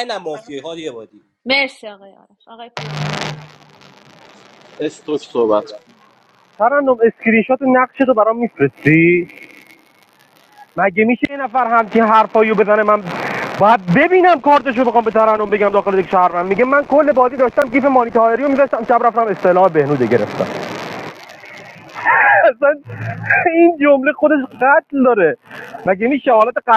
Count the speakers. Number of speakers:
4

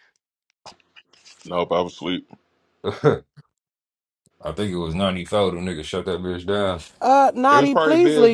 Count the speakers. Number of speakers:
3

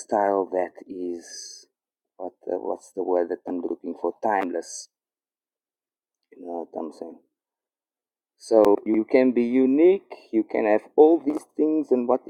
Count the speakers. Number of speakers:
1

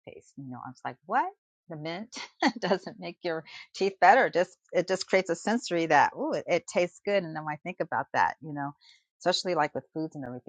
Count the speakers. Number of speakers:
1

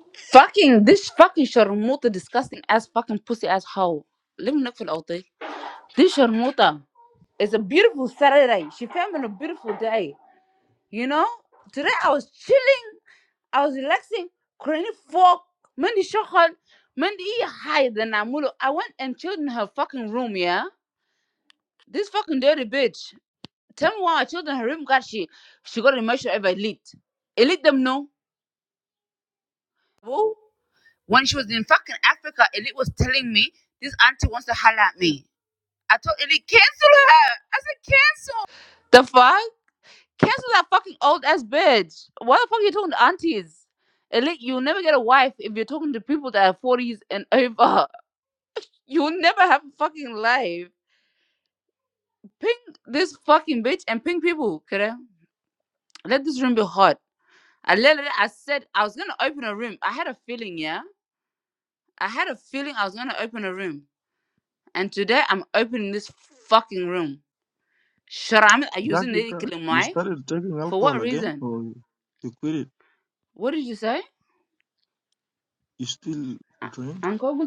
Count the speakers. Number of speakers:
2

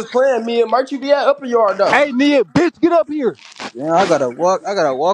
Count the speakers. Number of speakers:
3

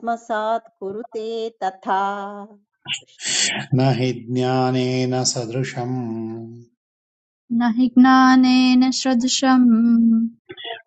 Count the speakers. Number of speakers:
3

